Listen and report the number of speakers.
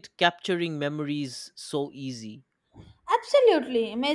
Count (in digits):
2